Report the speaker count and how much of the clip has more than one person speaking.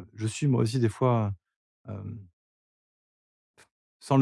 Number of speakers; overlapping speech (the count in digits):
1, no overlap